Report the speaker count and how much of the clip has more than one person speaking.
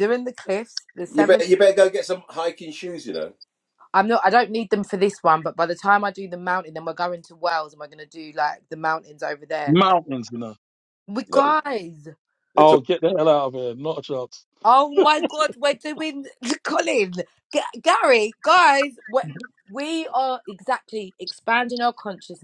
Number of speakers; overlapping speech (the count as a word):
three, about 3%